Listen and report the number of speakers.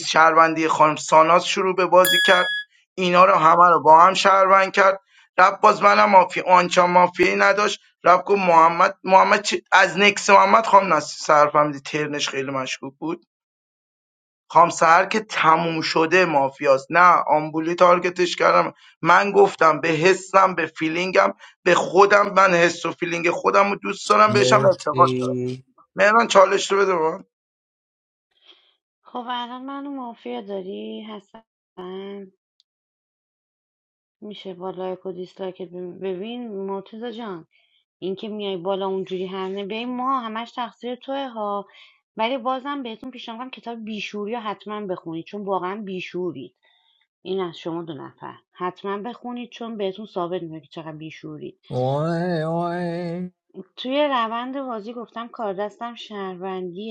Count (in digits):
3